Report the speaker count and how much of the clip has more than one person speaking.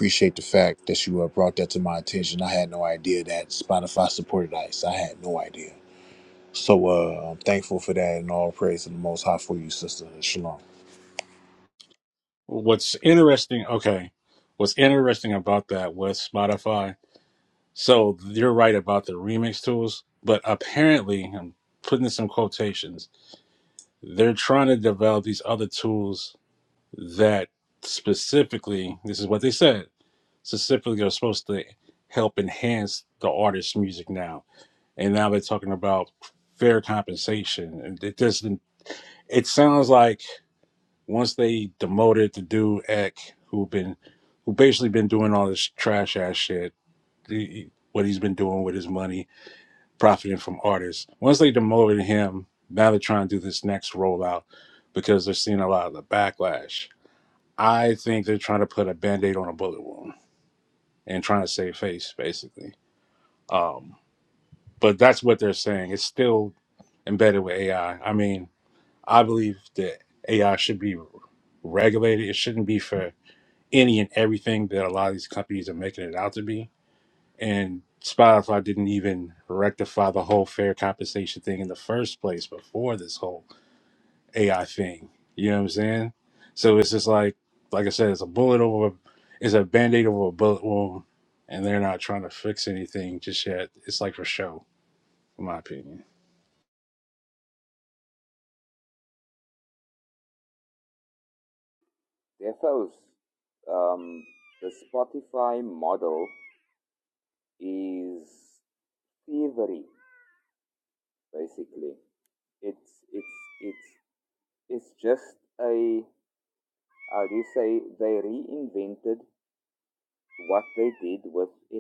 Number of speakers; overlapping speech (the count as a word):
three, no overlap